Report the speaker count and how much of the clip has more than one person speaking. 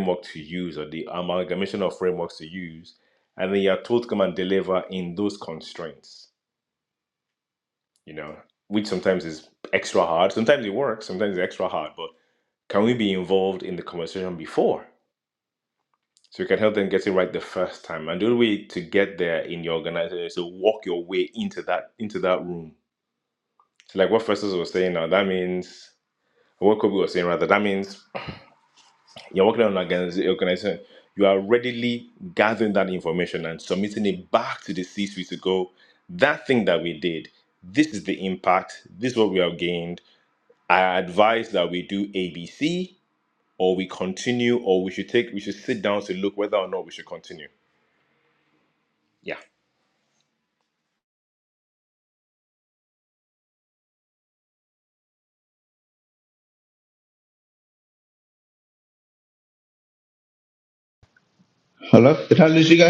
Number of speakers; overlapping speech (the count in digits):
2, no overlap